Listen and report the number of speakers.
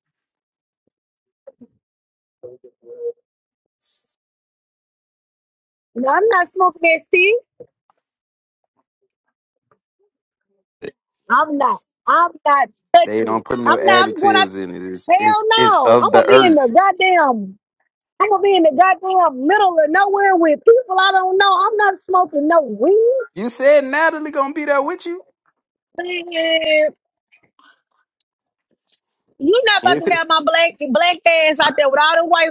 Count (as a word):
two